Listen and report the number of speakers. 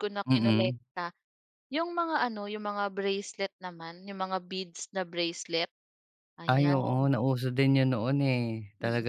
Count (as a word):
two